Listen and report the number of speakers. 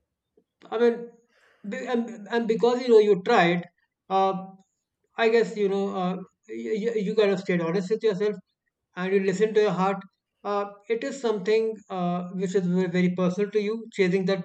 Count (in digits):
1